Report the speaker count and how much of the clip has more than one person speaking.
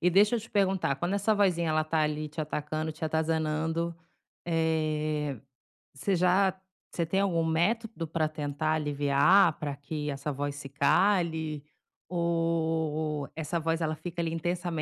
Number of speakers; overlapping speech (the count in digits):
1, no overlap